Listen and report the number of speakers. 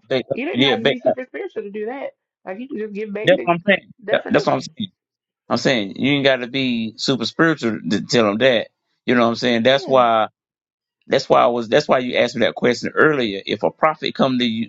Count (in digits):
2